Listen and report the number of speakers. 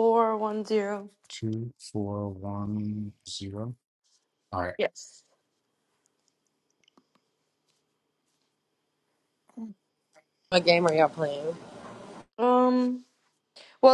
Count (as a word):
three